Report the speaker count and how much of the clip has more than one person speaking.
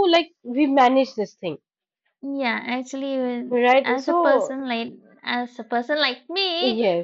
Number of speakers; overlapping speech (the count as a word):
two, about 16%